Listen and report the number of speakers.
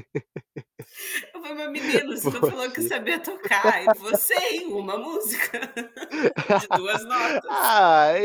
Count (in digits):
2